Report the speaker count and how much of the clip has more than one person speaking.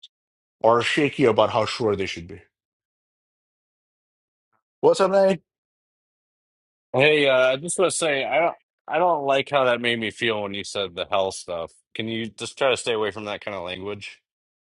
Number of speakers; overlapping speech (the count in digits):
2, no overlap